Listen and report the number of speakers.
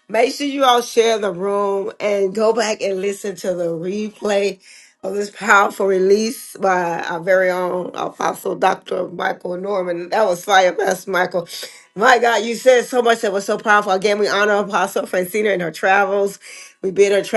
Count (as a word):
one